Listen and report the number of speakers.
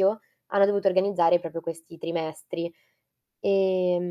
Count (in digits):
1